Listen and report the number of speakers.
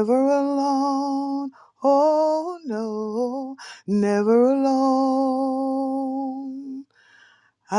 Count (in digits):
1